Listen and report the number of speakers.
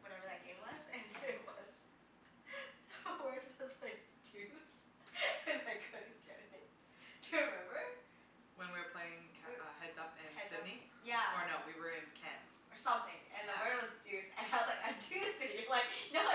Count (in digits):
2